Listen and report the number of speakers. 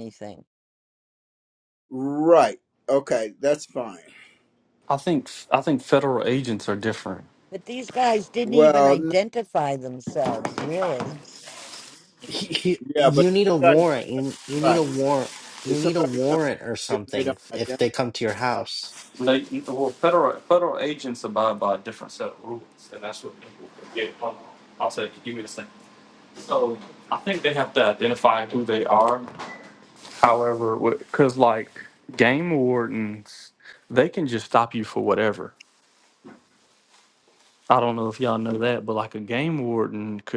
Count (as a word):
four